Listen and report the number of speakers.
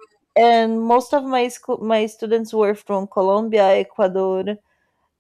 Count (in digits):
1